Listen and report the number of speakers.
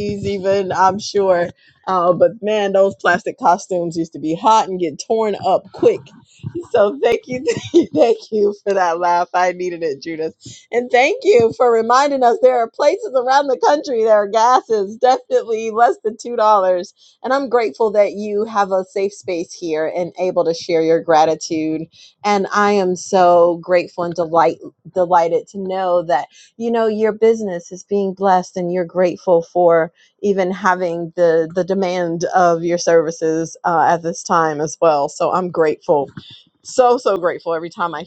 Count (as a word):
one